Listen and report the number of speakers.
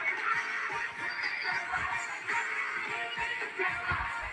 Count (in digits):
0